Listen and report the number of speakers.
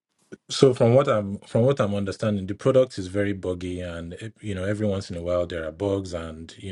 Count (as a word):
one